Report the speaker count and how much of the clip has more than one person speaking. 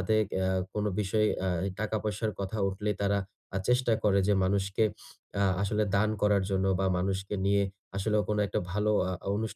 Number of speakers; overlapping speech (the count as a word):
one, no overlap